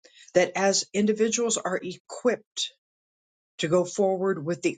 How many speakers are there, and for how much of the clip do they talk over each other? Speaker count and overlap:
1, no overlap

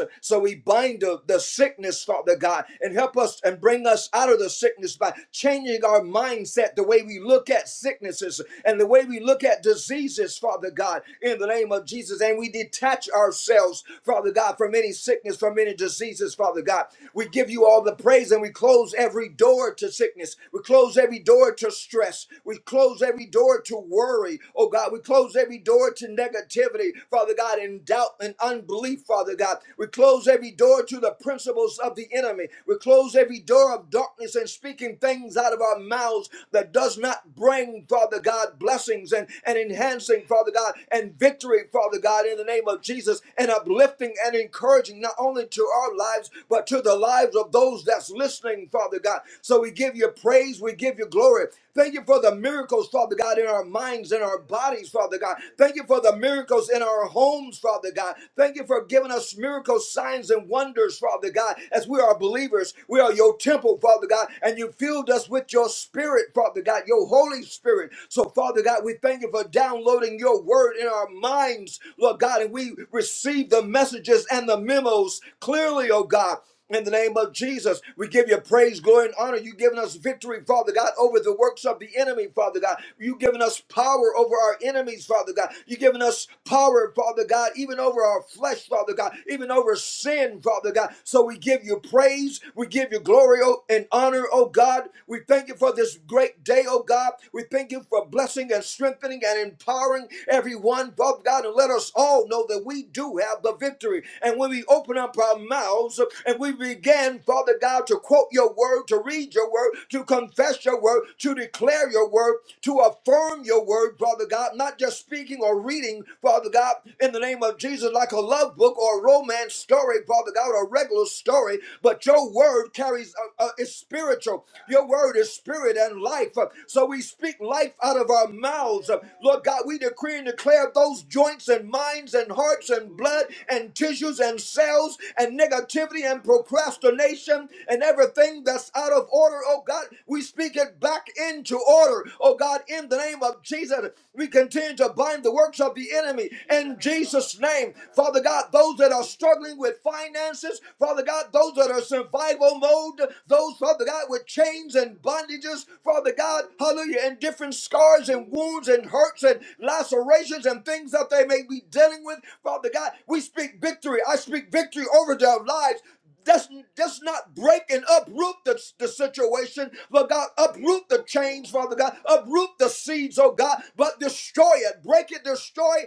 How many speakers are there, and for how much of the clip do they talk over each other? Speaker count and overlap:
1, no overlap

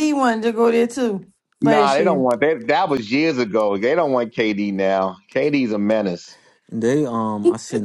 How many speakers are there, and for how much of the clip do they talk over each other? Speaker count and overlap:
3, about 7%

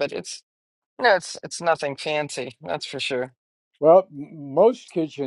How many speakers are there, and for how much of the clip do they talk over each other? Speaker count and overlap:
2, no overlap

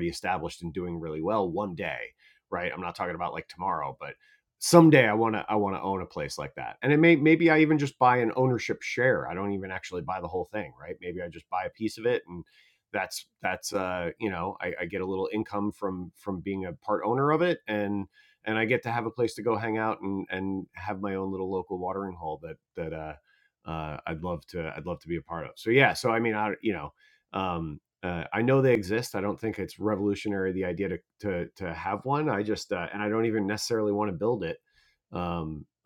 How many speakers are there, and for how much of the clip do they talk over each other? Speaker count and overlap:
1, no overlap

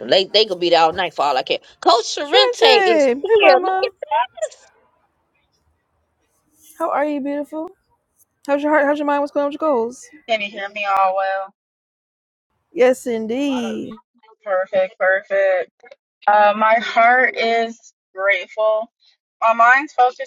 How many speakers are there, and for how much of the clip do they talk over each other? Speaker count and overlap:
3, about 6%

